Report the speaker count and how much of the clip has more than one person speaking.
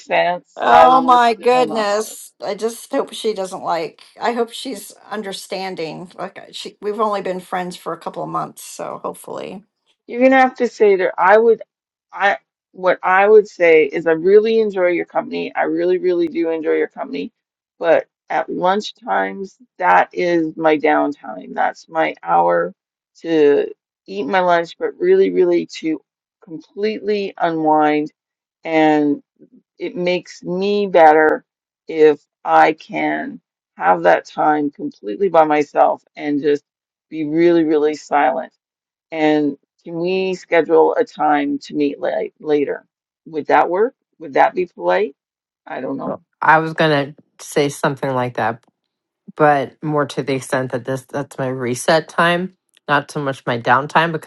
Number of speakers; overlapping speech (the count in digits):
3, about 3%